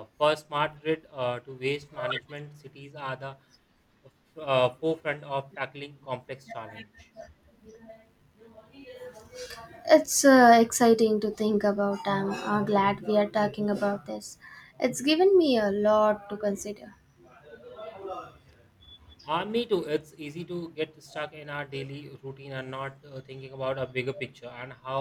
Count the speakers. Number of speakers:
two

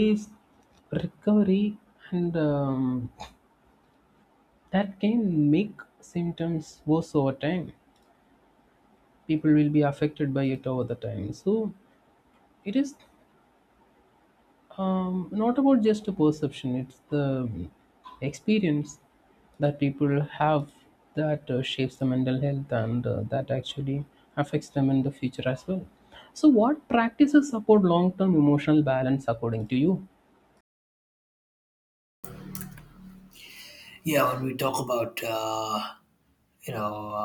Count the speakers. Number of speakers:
two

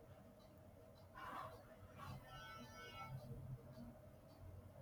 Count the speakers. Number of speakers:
zero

